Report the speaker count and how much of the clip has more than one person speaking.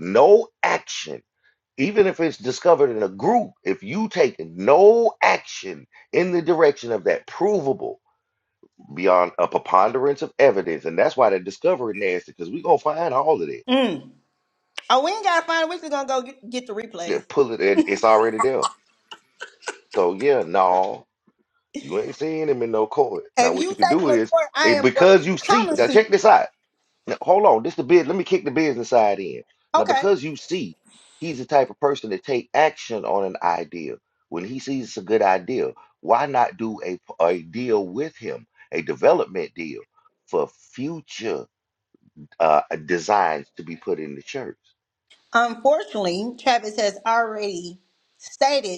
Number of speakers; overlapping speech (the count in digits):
2, about 6%